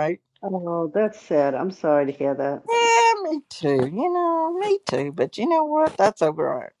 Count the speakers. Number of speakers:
2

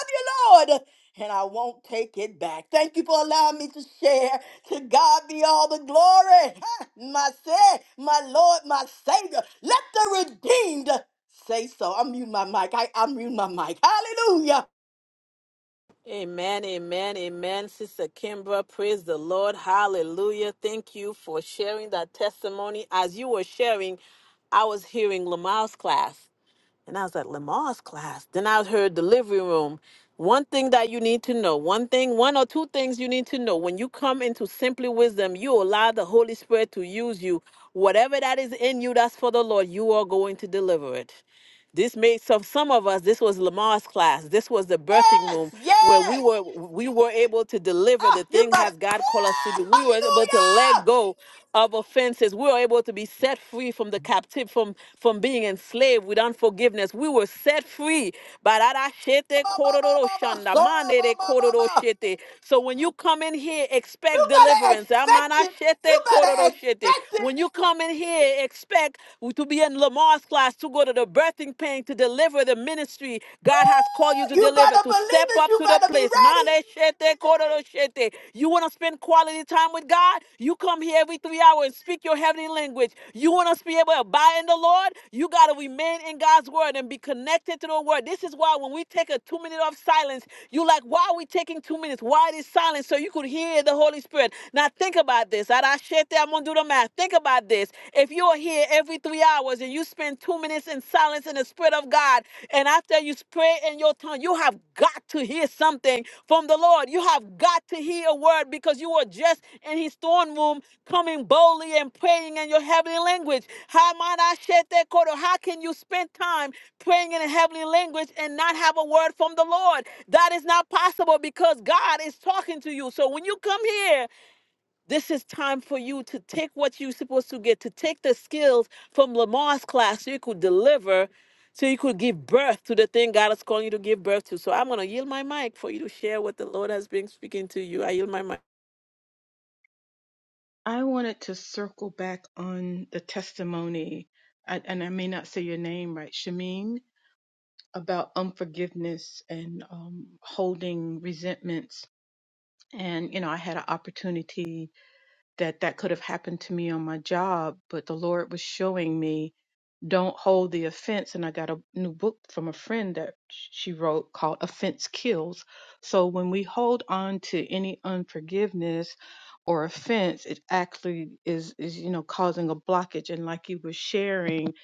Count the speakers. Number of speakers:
3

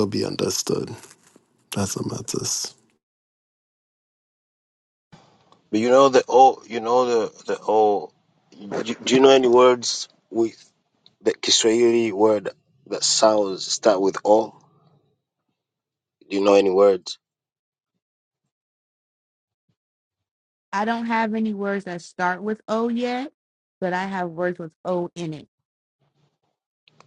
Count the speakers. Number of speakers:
3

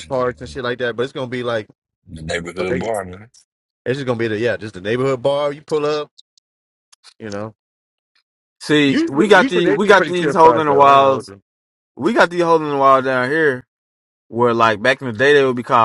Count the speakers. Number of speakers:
3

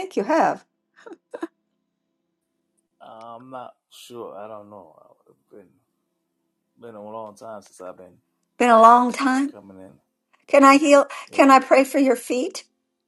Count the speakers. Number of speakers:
2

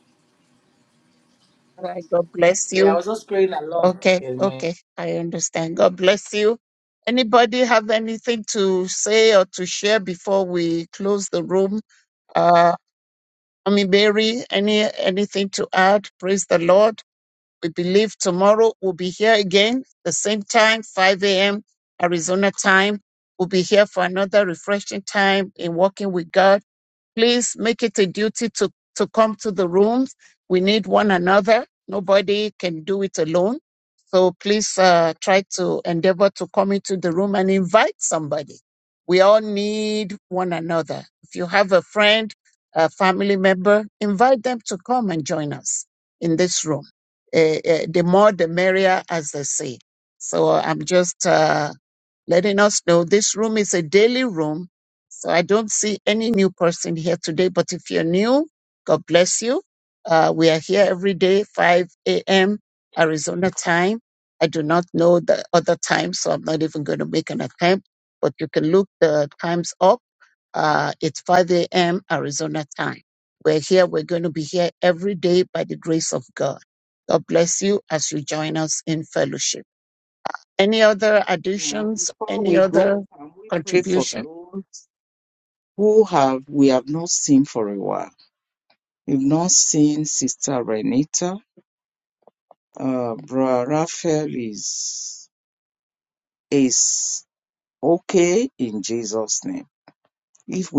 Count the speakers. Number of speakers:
3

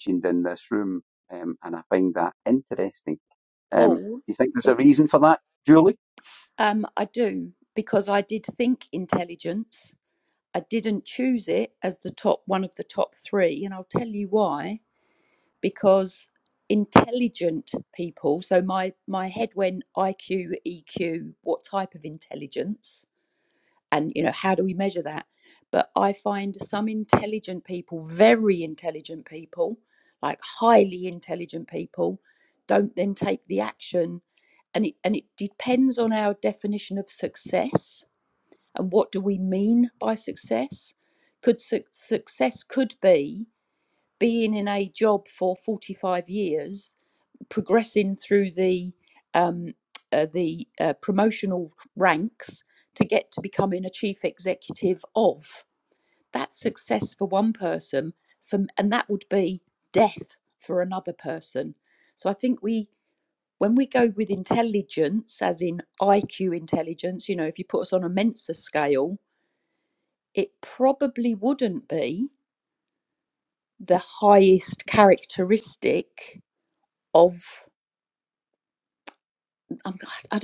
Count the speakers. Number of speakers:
2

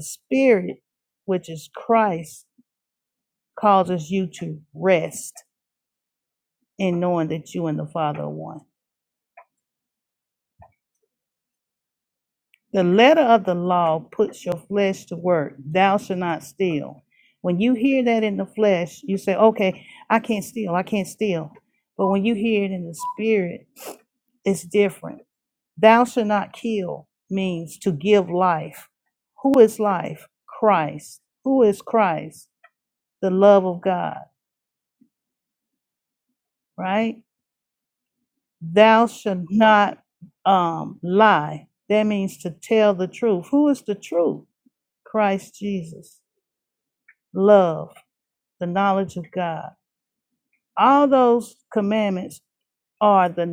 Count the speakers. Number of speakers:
1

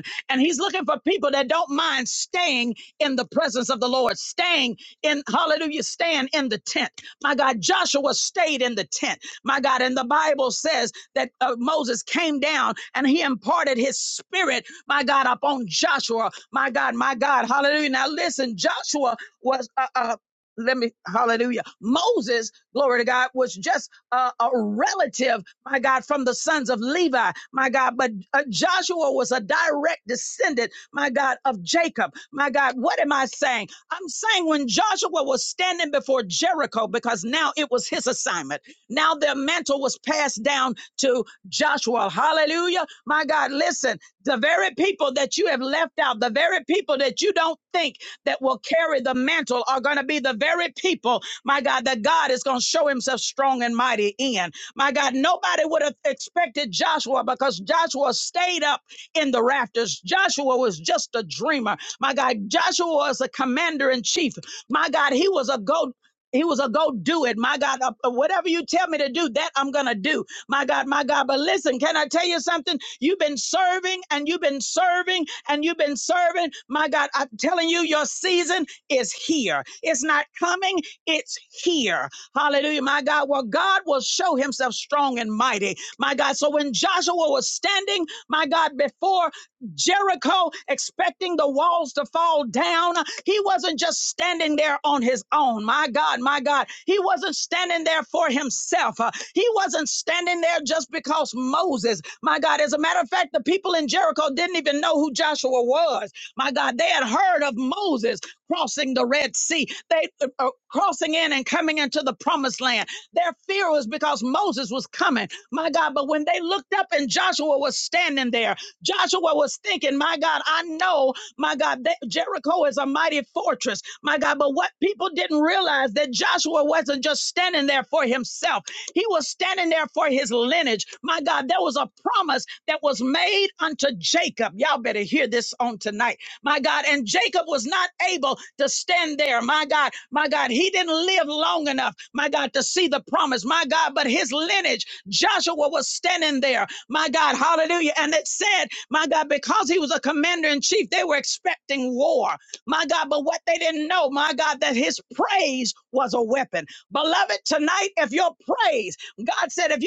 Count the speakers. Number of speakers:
1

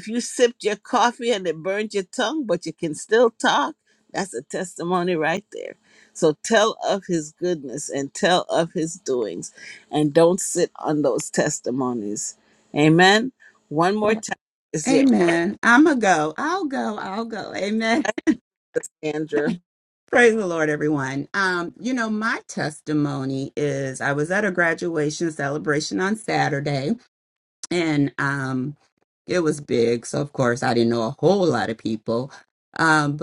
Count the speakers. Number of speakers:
2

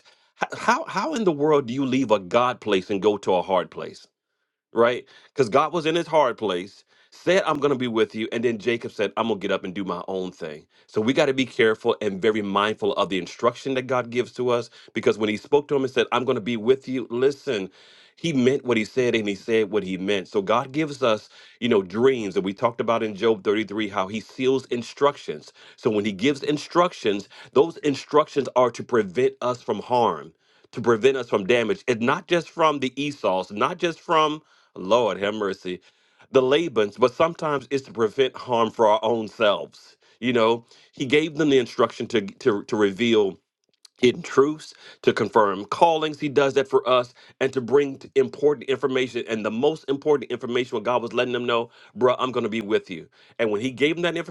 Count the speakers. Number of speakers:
1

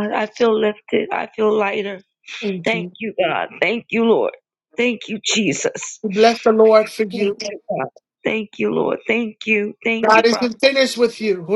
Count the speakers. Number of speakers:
2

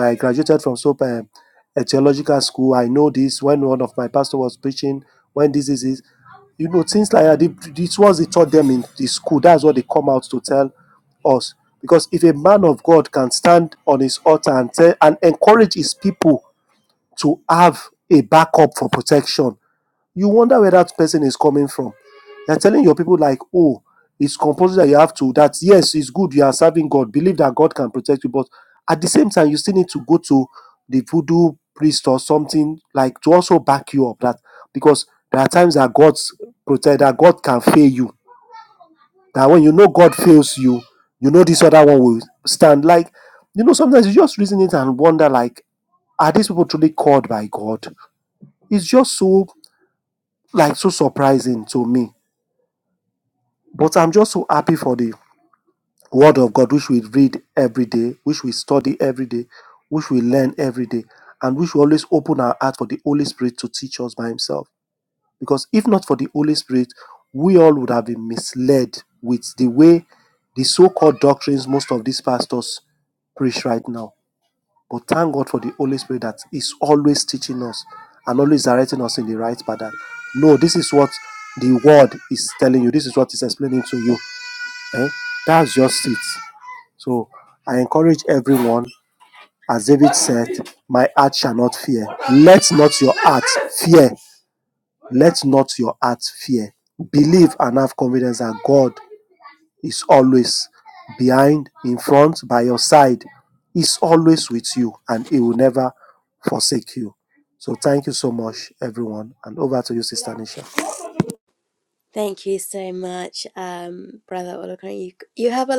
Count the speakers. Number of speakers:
2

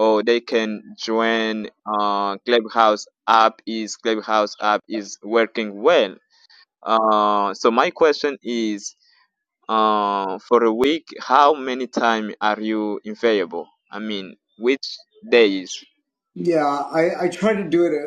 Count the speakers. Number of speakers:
2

